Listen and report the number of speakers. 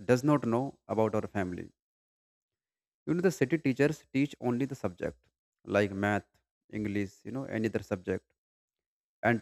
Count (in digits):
1